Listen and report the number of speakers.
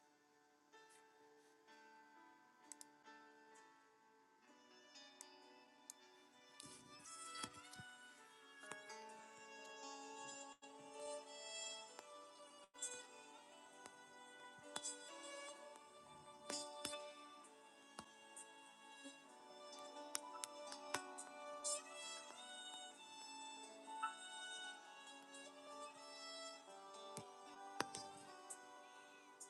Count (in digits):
0